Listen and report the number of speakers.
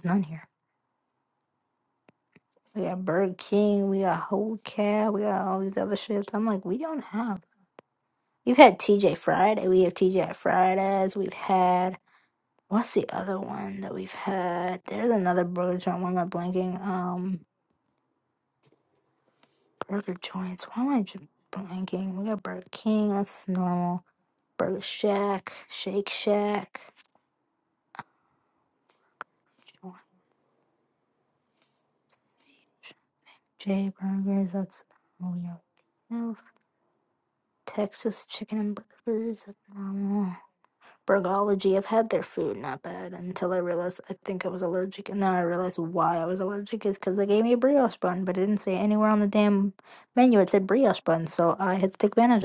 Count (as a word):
one